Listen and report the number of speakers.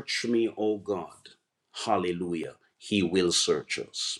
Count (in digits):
1